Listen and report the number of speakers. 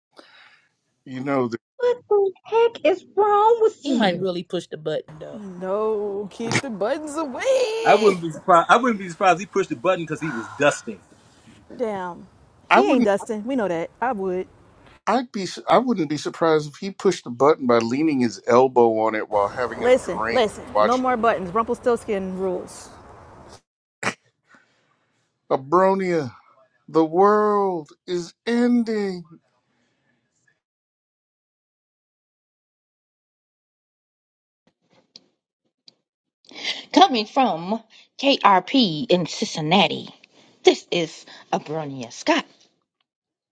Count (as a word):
six